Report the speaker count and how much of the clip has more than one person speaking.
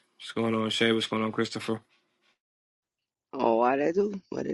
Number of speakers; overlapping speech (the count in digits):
2, no overlap